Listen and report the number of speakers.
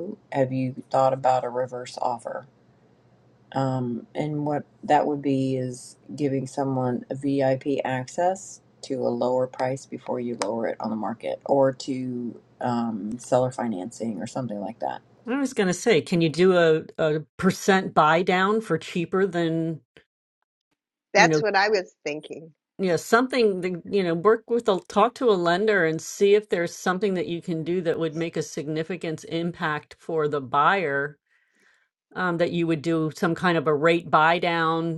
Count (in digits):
3